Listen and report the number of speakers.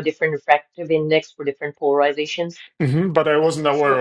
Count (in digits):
2